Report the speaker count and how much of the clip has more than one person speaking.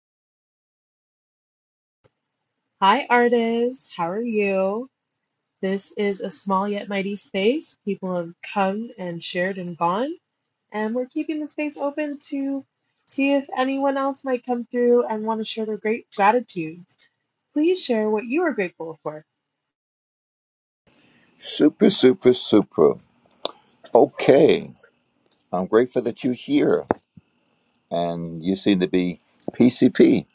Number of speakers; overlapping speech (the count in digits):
2, no overlap